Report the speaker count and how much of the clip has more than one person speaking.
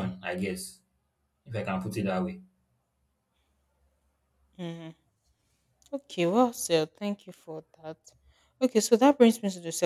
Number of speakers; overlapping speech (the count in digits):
2, no overlap